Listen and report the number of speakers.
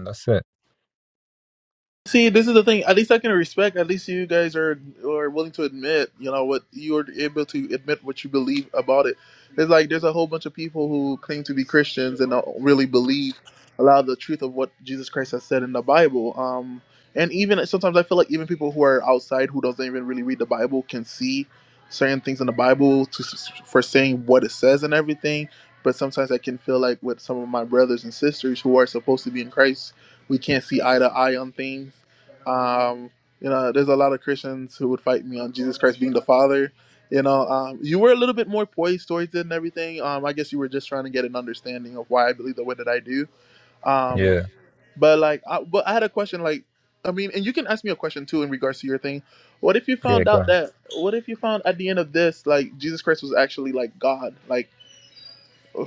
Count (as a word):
two